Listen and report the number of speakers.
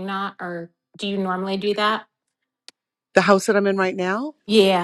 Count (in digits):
2